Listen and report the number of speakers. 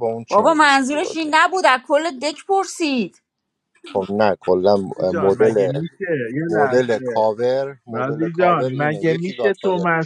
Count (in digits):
3